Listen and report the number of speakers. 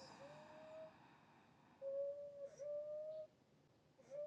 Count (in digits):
0